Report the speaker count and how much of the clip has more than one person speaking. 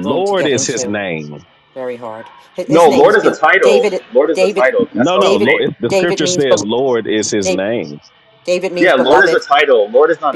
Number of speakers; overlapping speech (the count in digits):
3, about 47%